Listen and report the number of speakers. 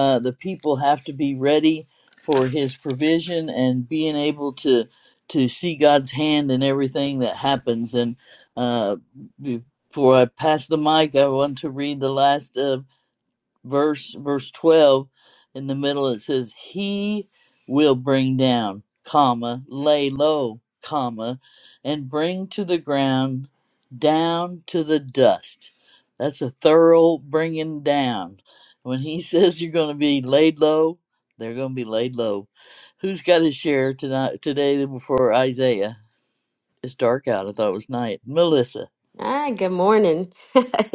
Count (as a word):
two